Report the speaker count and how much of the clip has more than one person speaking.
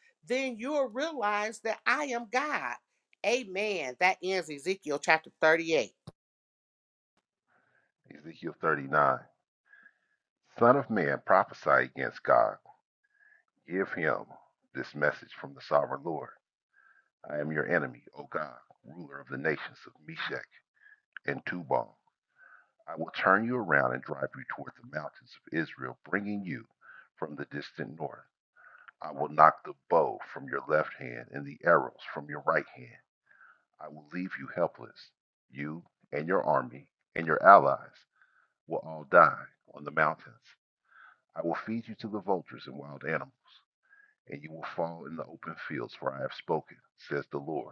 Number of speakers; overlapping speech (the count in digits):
2, no overlap